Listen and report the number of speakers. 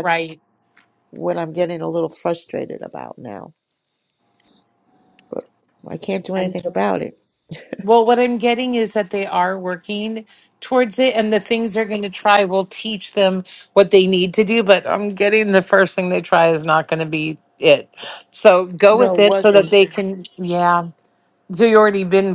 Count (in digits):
2